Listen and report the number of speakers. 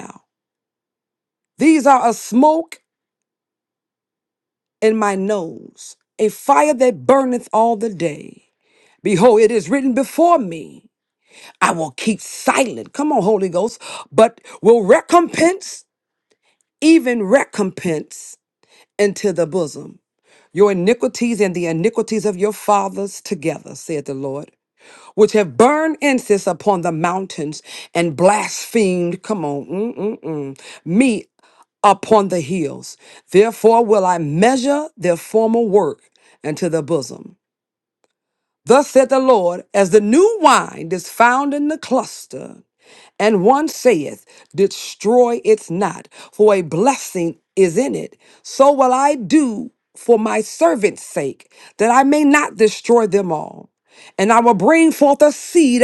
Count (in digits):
1